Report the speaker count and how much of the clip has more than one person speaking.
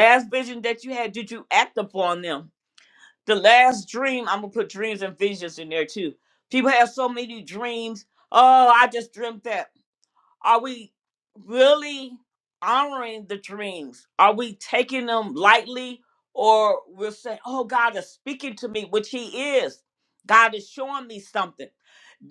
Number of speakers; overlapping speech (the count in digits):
1, no overlap